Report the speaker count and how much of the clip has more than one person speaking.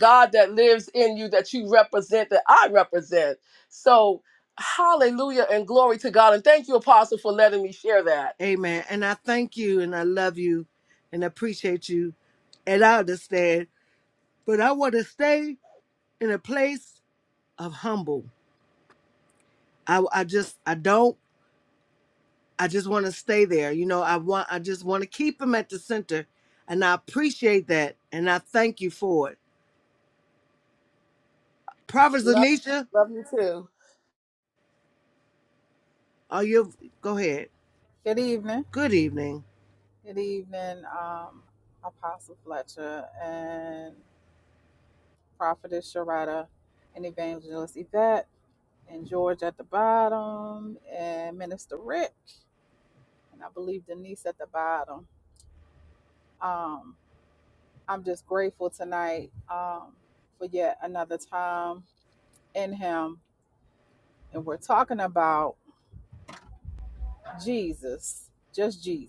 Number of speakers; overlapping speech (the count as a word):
three, under 1%